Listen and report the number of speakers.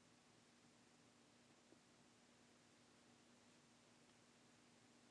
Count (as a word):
zero